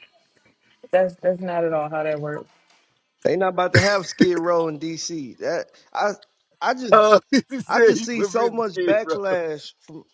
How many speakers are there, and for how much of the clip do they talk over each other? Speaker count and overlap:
three, about 15%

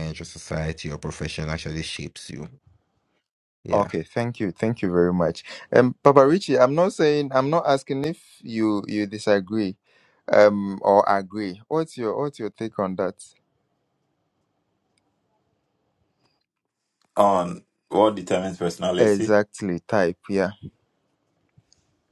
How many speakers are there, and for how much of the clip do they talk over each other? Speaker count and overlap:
three, about 3%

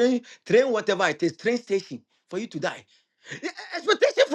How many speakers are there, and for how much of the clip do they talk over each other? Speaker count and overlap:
one, no overlap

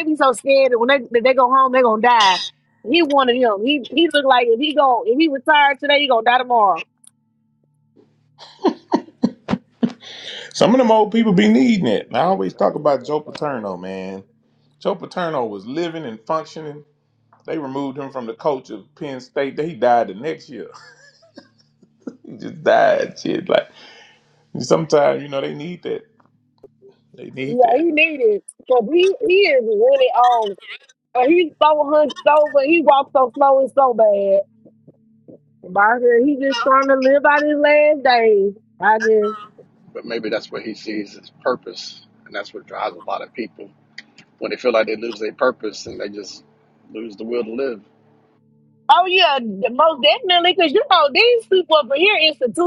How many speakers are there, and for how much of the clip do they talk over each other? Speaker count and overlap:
three, about 1%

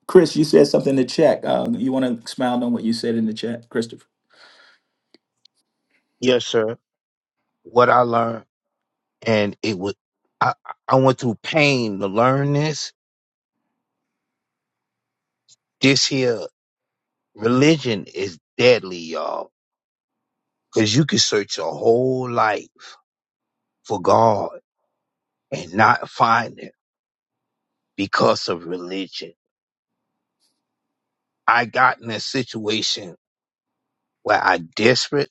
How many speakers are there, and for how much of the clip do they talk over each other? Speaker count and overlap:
two, no overlap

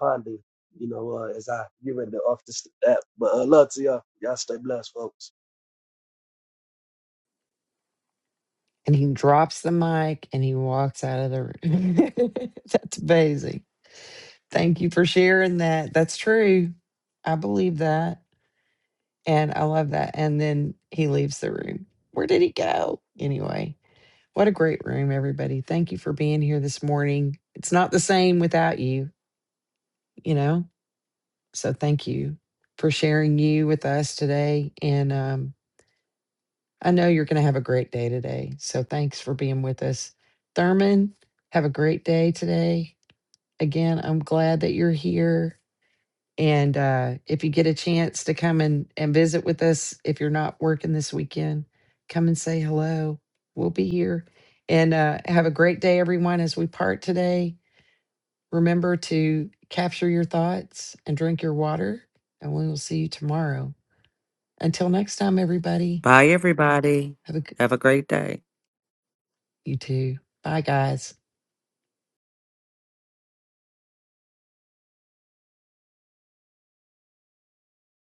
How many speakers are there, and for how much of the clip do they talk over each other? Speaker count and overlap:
three, no overlap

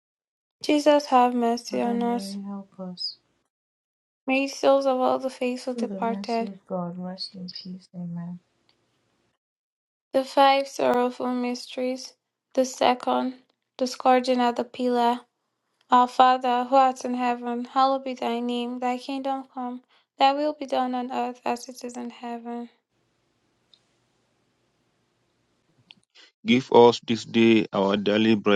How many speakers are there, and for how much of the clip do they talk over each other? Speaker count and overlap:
three, about 4%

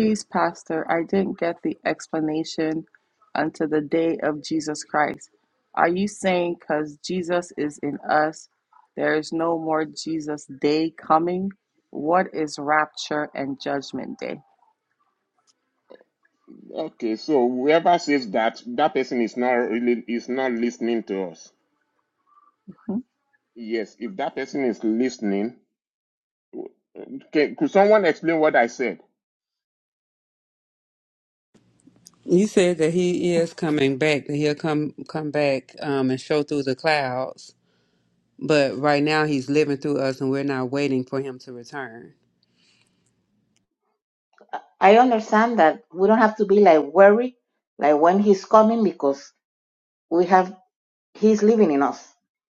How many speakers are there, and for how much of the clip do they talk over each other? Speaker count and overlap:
four, no overlap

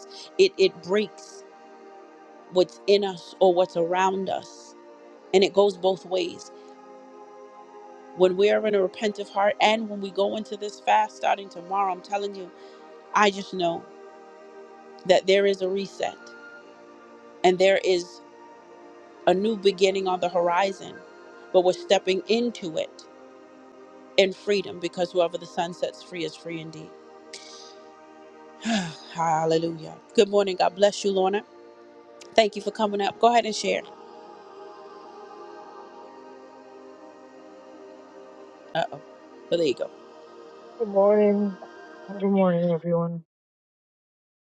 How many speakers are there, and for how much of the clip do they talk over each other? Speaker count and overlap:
two, no overlap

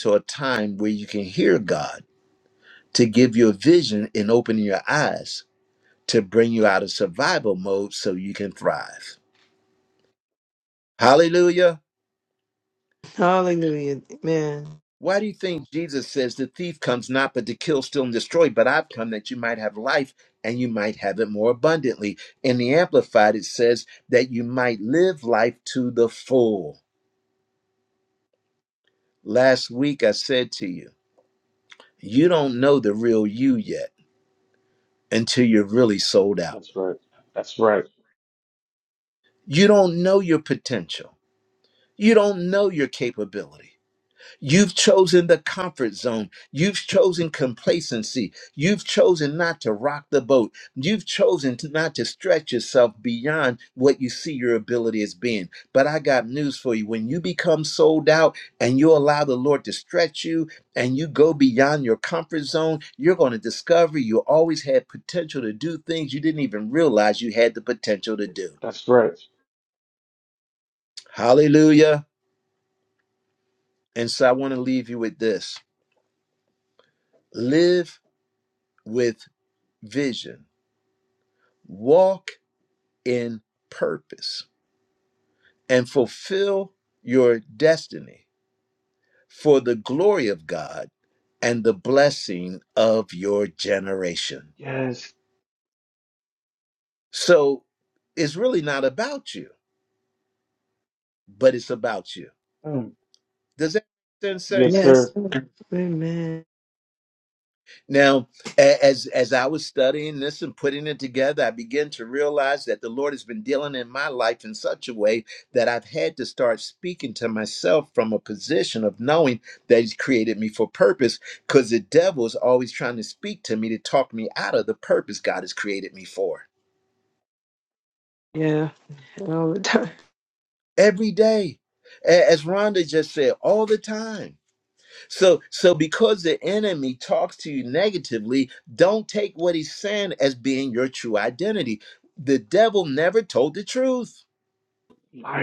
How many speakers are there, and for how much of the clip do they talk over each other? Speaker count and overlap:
three, under 1%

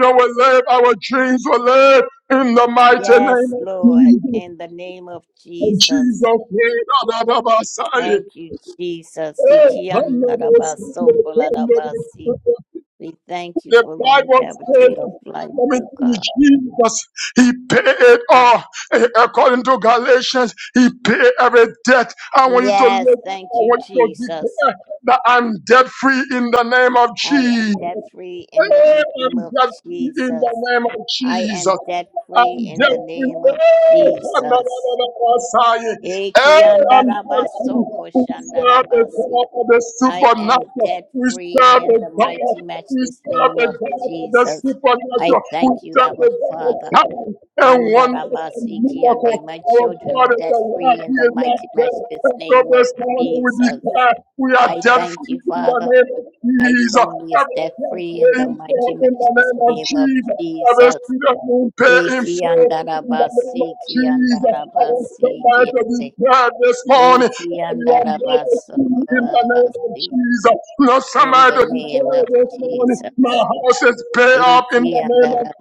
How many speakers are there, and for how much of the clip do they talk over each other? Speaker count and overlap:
two, about 51%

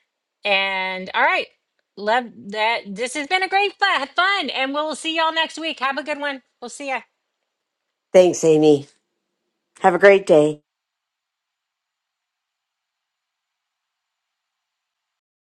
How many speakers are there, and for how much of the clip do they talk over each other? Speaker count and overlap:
two, no overlap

